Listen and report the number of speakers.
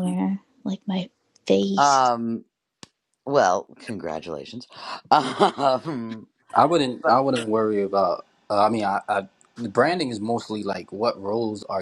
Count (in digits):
3